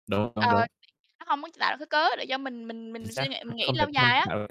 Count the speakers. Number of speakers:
two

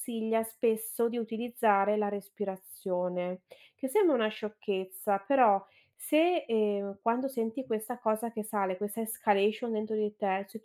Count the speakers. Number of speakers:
one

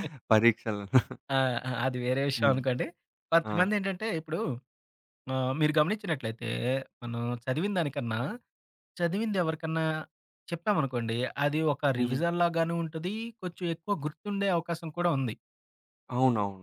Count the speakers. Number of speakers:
two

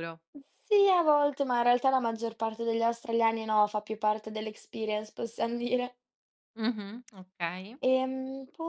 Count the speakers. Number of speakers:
two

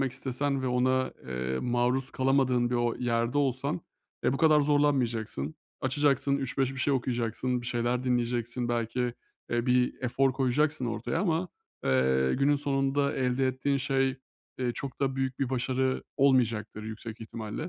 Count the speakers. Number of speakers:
one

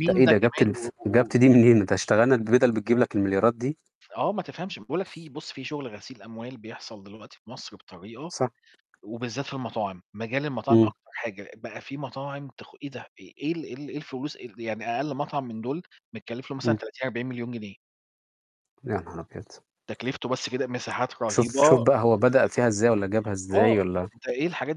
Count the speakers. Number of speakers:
two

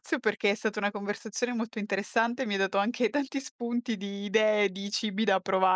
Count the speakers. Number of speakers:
one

